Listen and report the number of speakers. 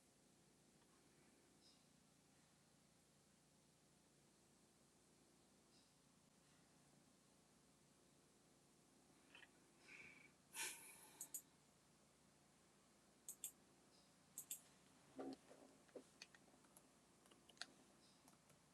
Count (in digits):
0